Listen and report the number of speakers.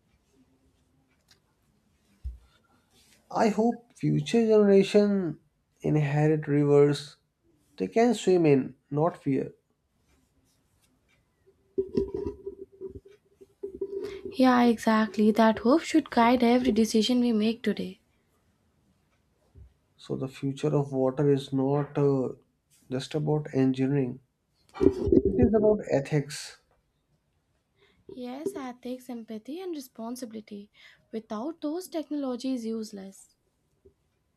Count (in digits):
2